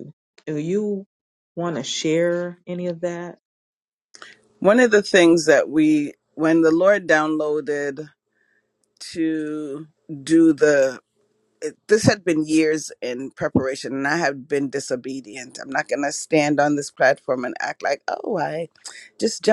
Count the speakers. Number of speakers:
two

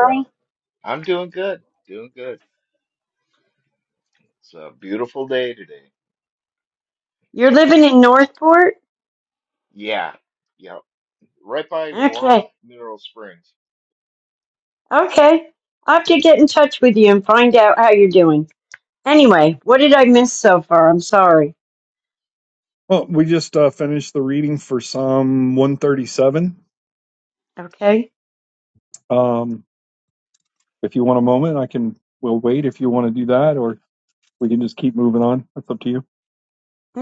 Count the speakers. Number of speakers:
three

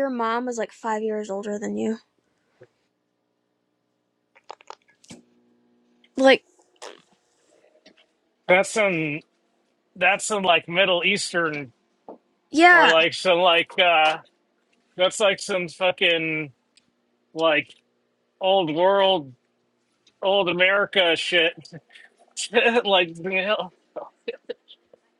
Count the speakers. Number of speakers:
two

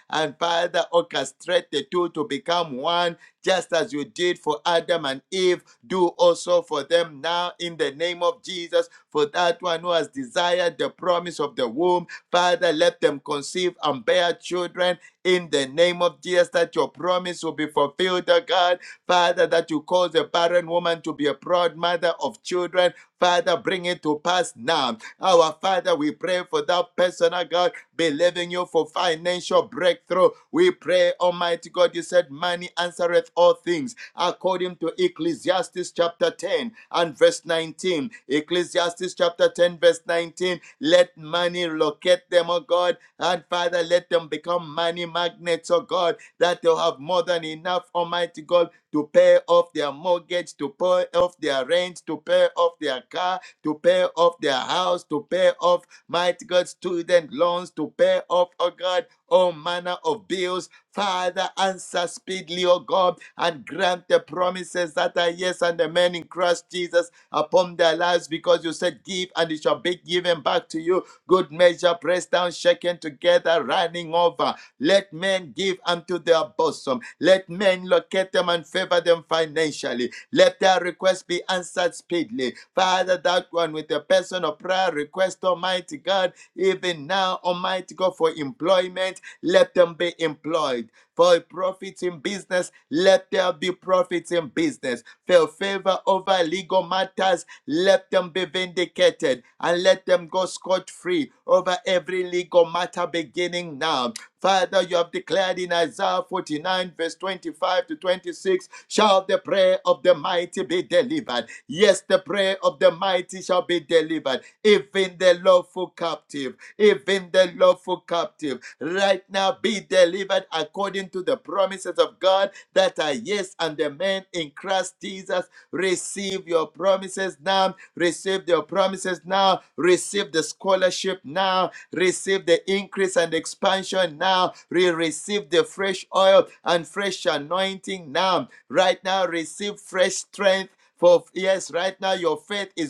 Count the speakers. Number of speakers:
one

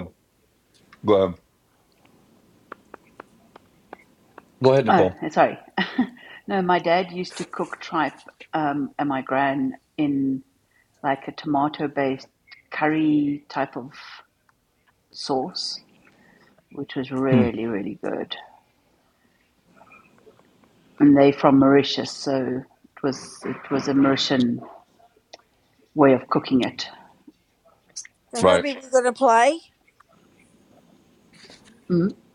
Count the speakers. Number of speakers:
three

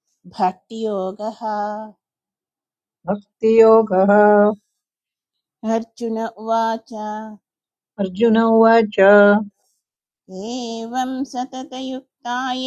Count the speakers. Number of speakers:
two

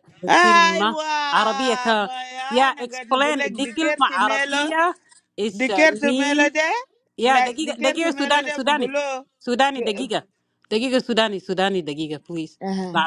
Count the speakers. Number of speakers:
two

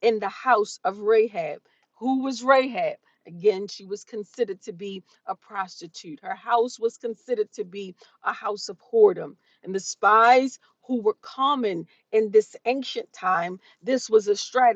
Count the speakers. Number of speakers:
one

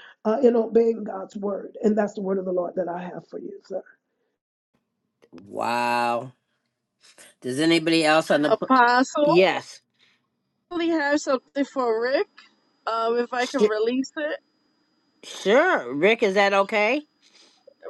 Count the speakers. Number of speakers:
three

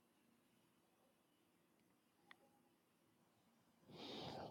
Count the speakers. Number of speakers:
zero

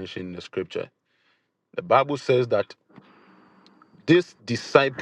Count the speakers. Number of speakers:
one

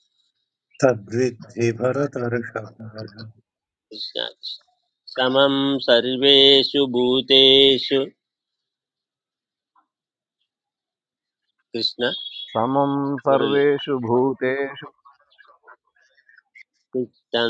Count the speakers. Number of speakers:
three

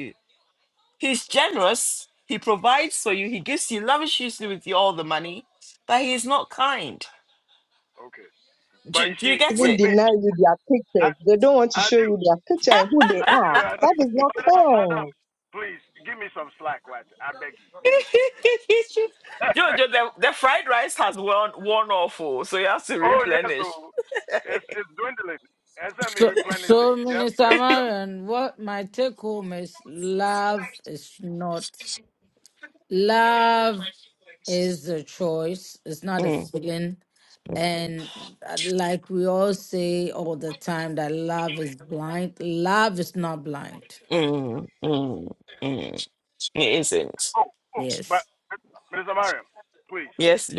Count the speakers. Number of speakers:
four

